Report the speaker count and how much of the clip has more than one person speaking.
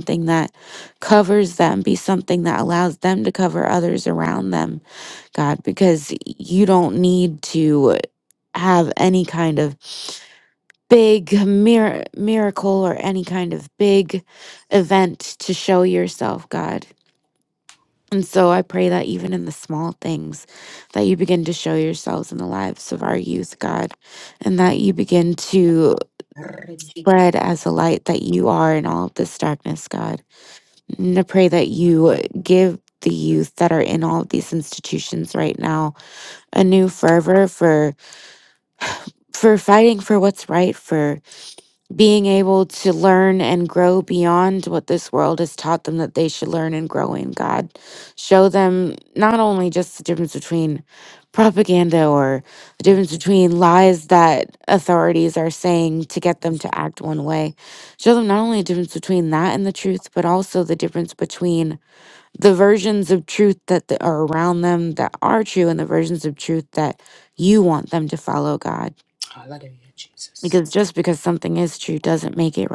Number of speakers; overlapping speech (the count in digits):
2, under 1%